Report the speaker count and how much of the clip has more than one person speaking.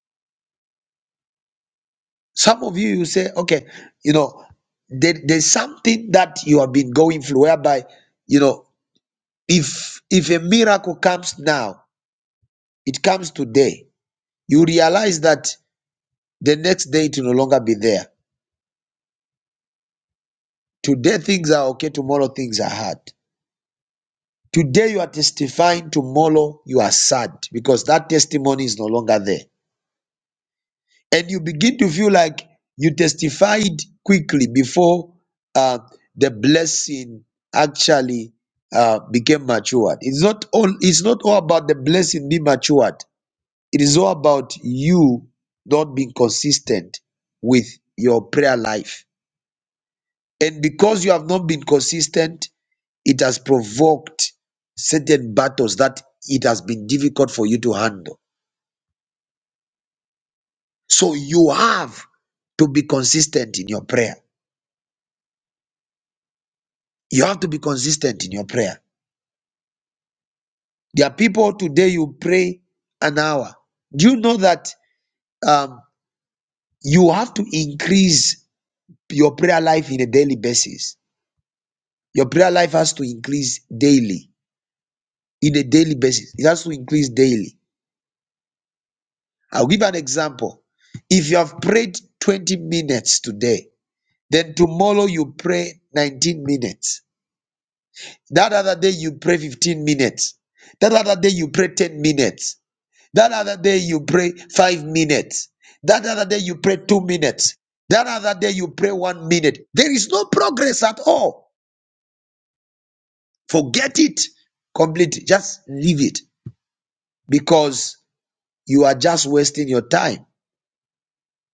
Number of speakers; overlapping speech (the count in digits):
1, no overlap